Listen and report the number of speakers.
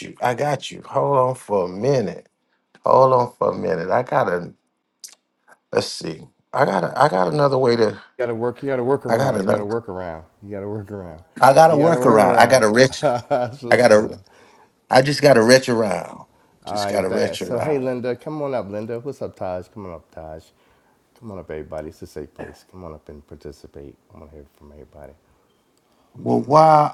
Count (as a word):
two